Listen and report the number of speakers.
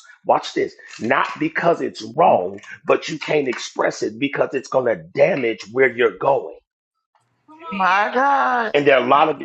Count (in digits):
2